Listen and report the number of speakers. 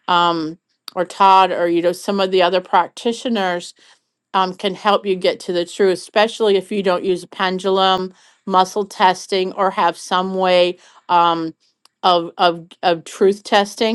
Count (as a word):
one